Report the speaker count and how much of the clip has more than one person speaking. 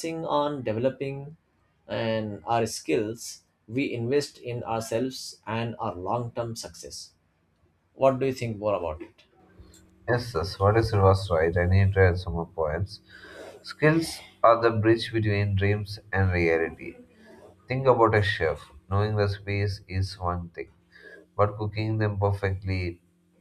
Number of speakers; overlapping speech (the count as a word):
two, no overlap